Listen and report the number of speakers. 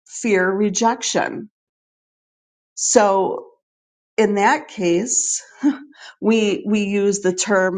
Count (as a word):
one